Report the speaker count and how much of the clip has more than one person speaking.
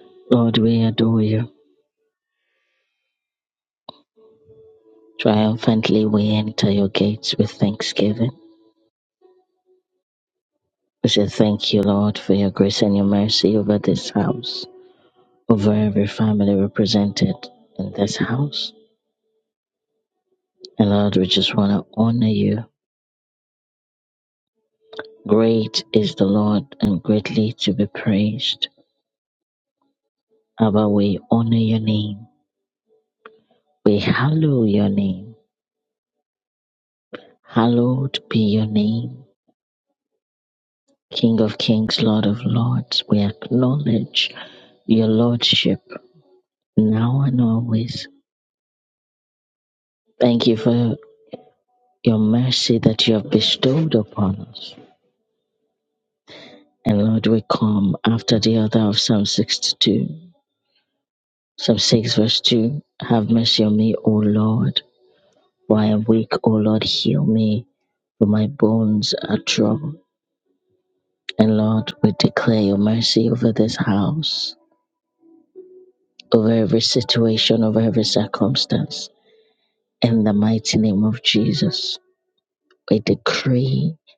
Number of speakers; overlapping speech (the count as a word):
one, no overlap